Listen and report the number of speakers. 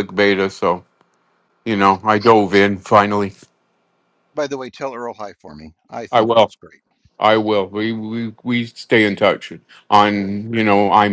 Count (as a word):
two